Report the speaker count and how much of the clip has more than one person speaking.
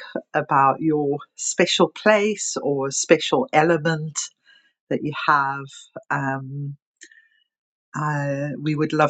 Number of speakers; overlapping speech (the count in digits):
1, no overlap